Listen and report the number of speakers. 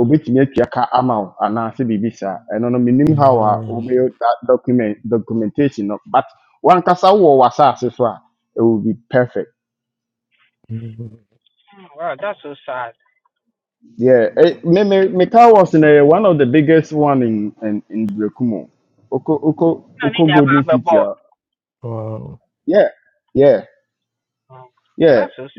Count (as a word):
three